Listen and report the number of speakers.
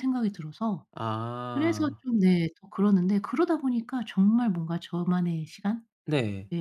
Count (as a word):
two